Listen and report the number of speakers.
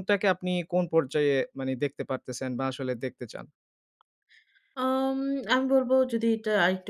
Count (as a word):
two